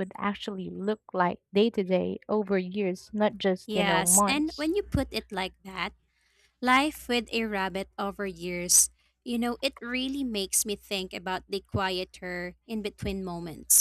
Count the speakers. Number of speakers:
two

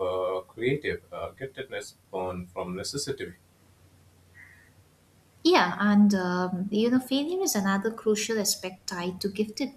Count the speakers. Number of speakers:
two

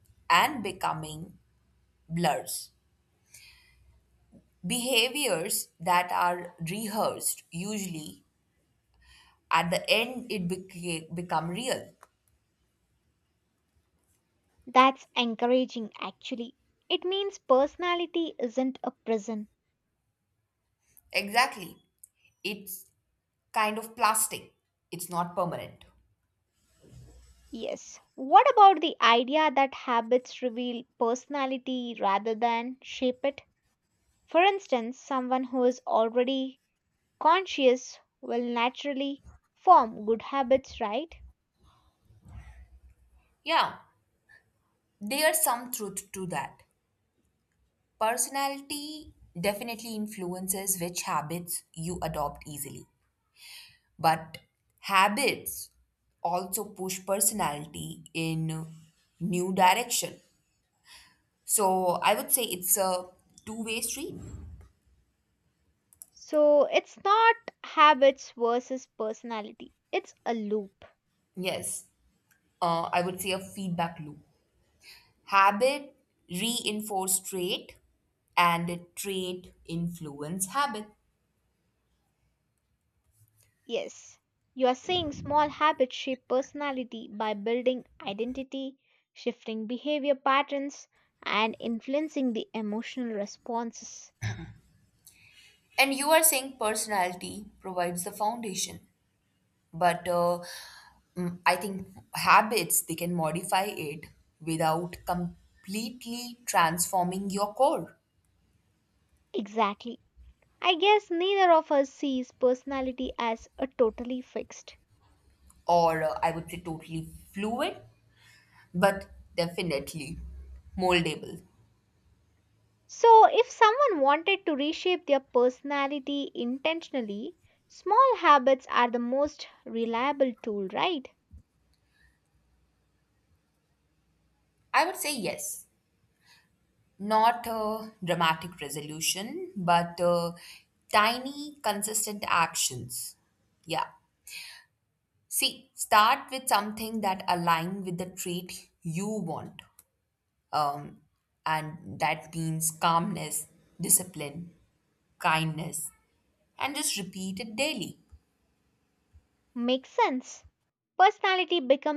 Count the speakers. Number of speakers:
two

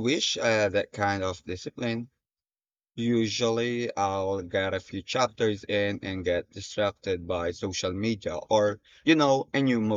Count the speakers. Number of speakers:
one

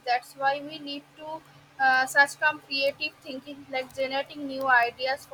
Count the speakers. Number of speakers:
one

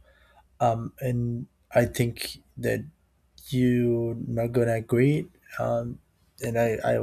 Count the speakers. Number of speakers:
one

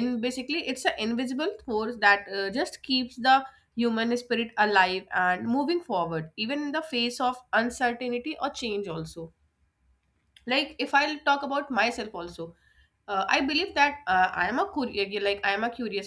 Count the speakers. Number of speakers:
one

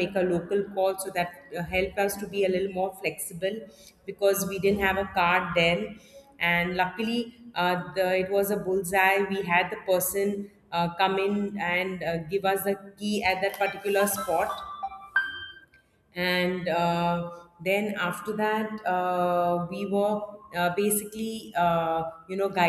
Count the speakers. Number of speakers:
one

